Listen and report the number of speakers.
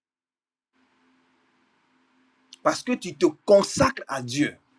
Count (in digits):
1